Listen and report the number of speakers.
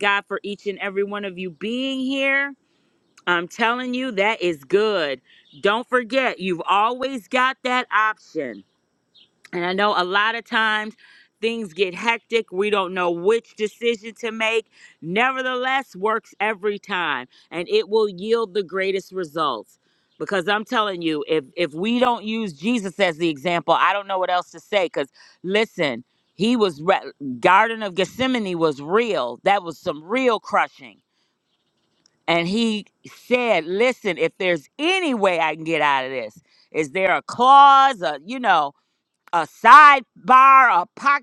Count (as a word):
one